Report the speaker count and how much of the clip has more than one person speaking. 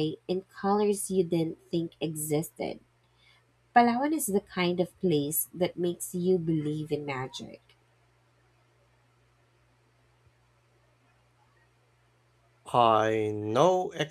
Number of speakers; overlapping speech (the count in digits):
2, no overlap